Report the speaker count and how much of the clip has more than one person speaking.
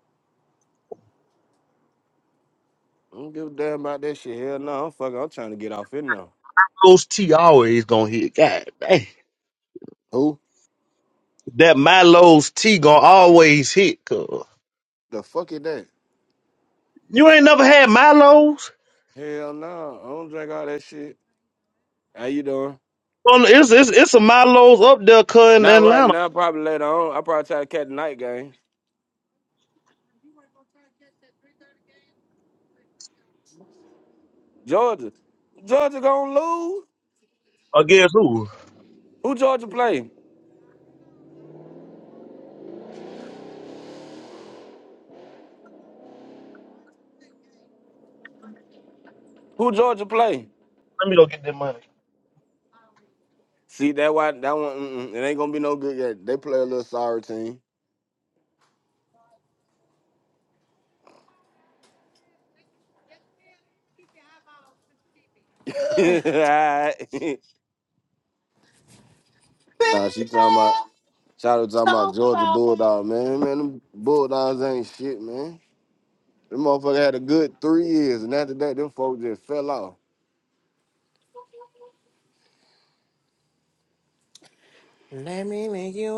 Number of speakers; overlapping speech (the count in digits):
3, about 2%